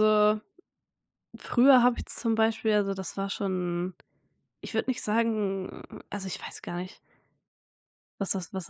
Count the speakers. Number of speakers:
1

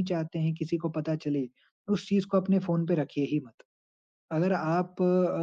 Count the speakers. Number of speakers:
1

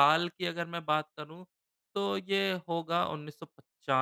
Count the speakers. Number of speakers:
1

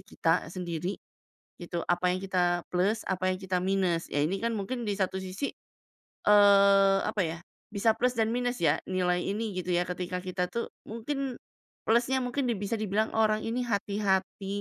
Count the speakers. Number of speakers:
1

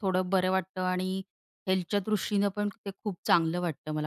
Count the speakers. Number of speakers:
1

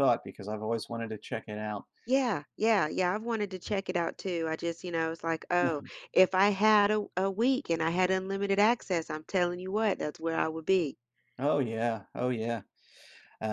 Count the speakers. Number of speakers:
2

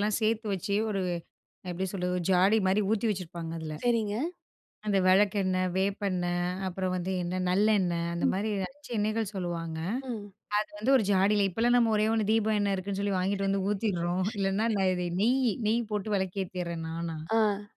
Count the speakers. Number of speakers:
2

